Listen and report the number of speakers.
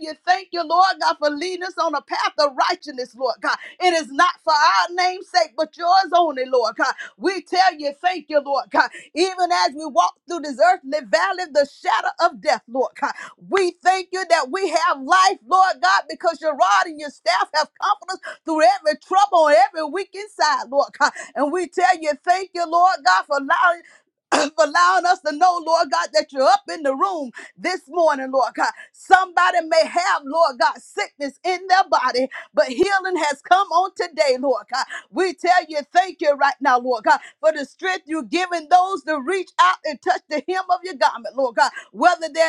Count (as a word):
one